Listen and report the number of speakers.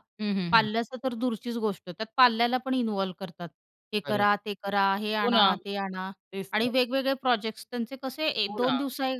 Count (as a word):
two